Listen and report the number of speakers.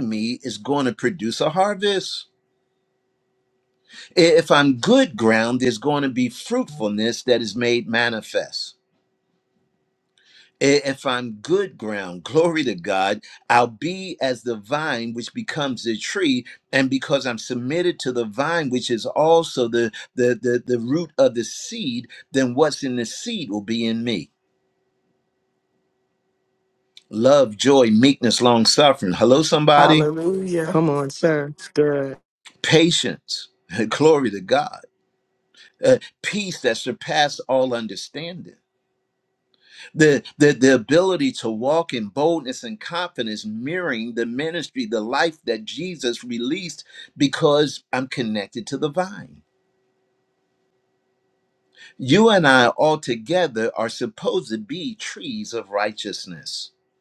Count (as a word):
three